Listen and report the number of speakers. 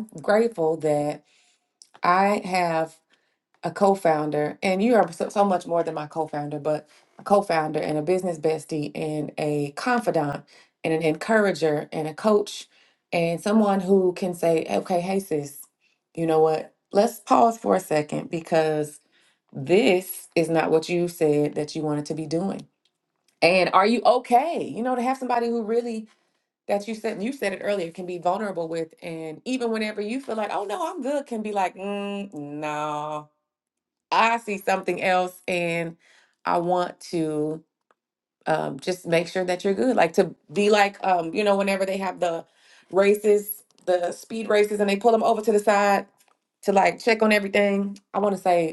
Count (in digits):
1